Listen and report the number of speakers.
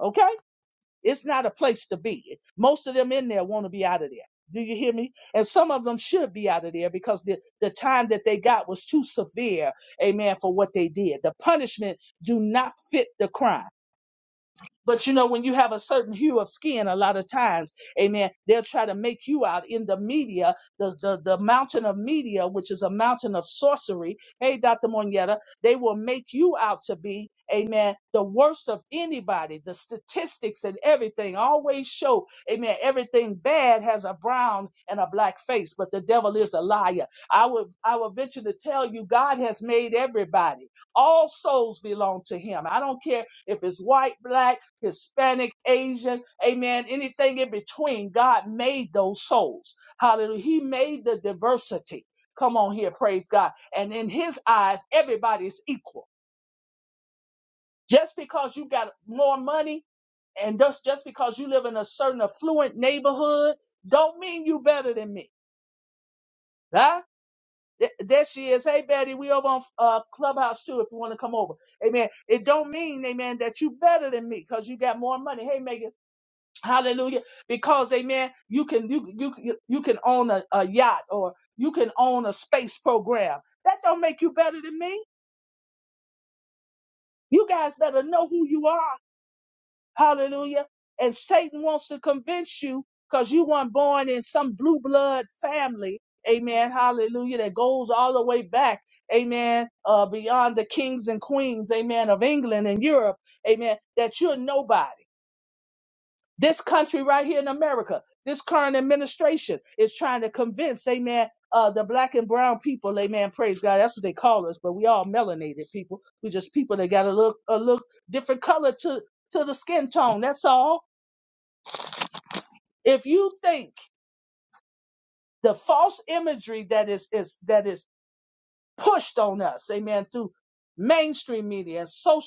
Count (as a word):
one